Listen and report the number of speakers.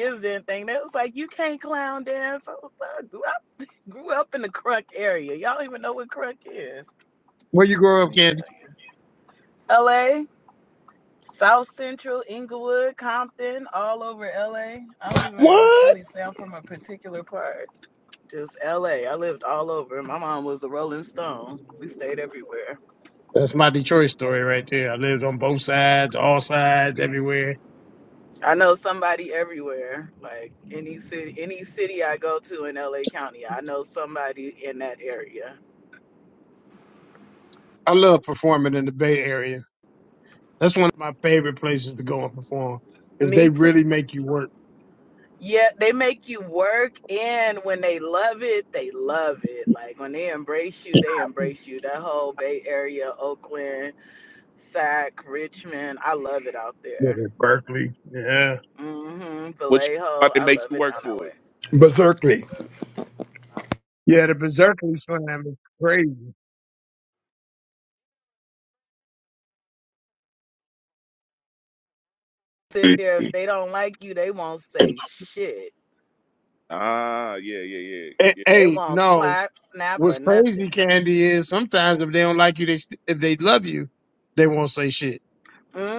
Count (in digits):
4